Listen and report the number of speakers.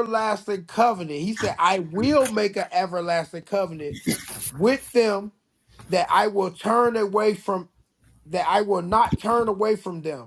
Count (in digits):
1